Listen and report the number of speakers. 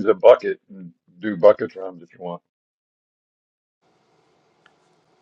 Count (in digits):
1